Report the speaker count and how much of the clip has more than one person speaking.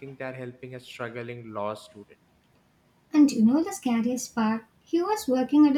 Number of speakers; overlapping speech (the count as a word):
two, no overlap